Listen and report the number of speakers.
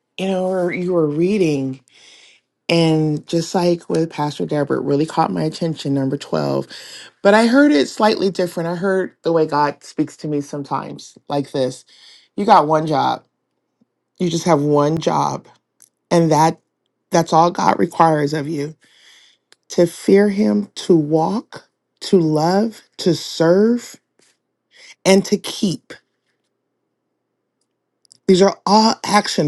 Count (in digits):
1